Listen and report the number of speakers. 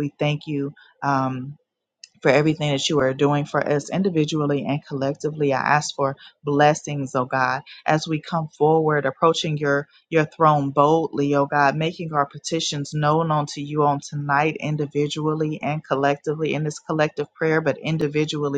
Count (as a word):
one